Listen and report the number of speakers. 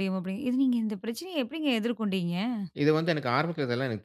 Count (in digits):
2